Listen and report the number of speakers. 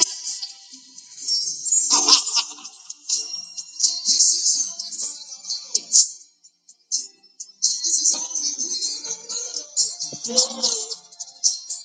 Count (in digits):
0